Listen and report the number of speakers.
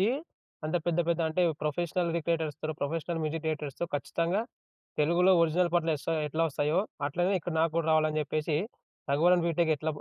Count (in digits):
1